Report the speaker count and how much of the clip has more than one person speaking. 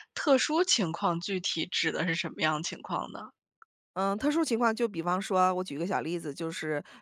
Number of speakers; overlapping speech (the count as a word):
two, no overlap